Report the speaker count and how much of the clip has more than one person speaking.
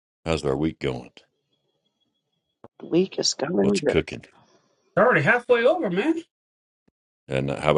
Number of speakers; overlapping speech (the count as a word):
three, about 5%